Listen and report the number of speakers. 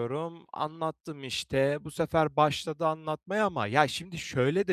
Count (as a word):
one